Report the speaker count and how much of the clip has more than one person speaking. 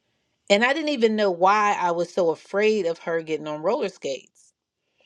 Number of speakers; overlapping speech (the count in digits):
1, no overlap